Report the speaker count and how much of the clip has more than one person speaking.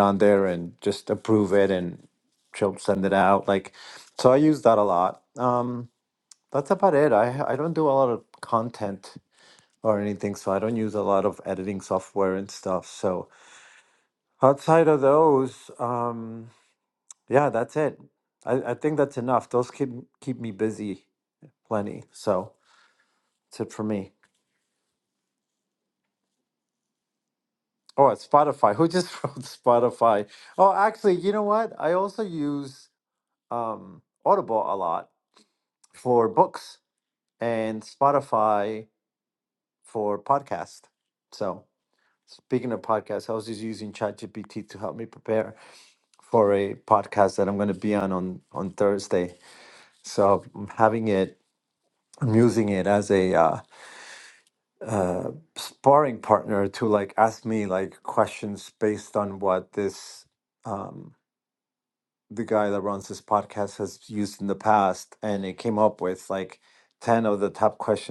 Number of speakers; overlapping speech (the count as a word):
one, no overlap